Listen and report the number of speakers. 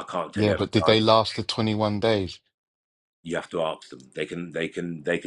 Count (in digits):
2